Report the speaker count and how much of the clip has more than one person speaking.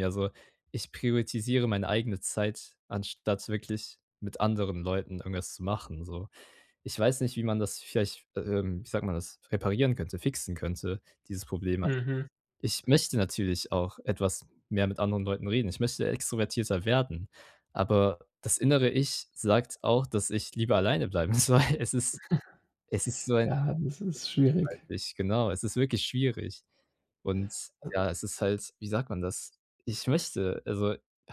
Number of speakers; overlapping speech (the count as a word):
two, under 1%